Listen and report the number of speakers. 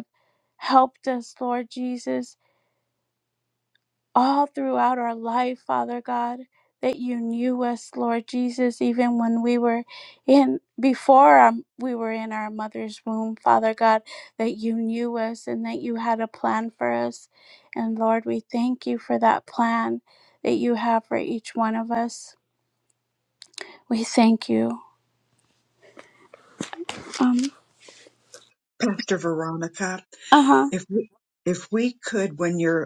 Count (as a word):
two